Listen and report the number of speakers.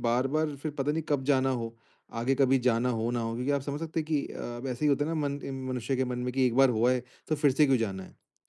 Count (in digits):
1